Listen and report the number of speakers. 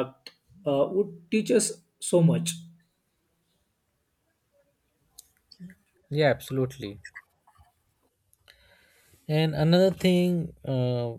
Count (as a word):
two